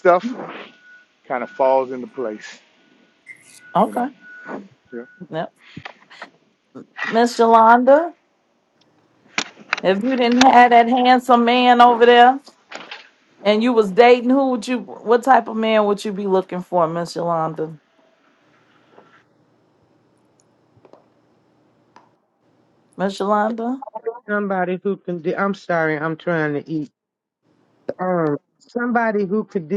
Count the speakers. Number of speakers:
3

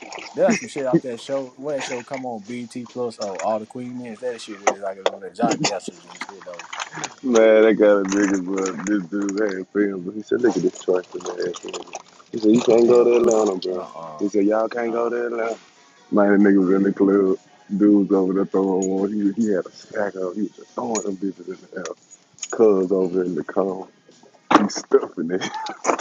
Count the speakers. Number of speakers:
2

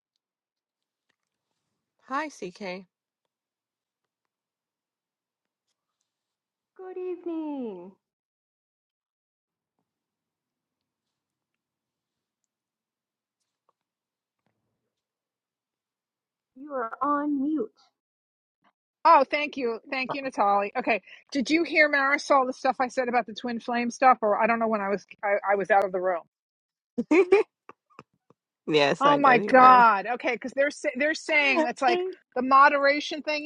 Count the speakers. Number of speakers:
3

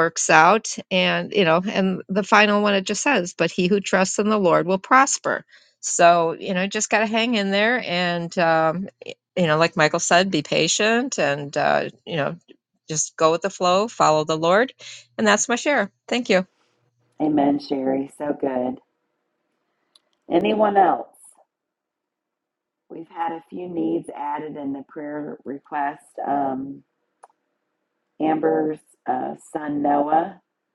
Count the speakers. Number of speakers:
2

